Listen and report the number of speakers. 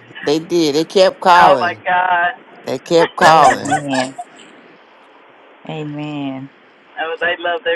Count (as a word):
three